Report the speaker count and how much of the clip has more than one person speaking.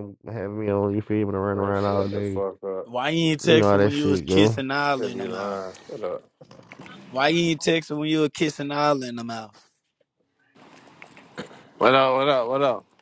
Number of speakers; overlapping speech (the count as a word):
four, about 20%